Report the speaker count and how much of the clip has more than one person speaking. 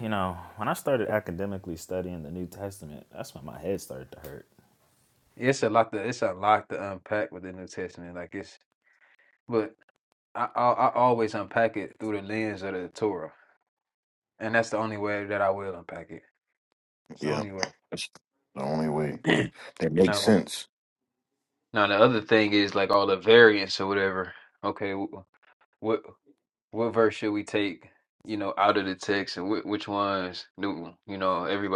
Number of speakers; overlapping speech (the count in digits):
3, about 2%